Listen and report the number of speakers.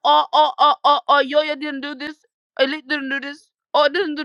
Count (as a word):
one